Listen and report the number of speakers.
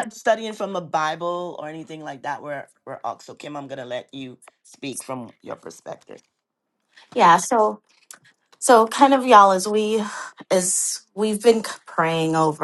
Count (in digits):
2